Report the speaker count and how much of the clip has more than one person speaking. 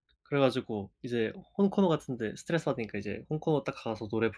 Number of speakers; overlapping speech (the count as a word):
one, no overlap